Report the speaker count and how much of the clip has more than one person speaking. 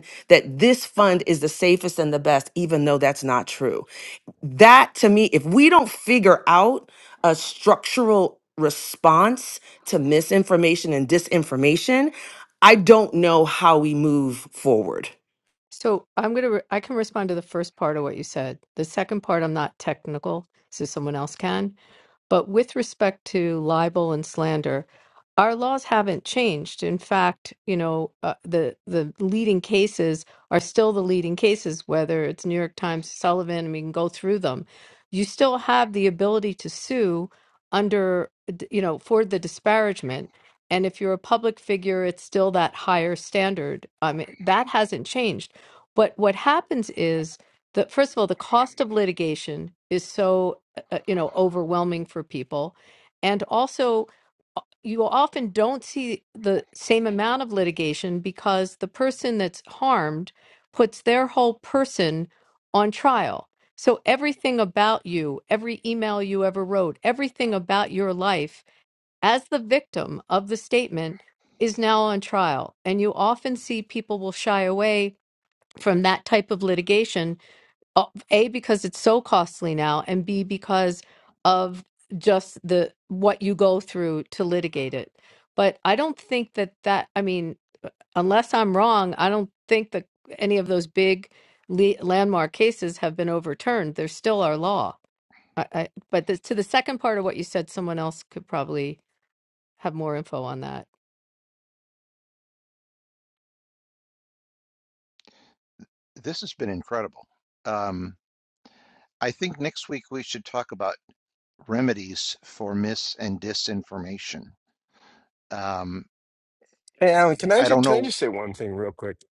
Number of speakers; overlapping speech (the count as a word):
four, under 1%